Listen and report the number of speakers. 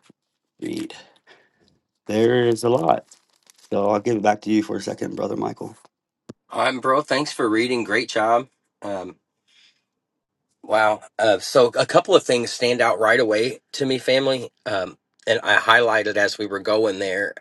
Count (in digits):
2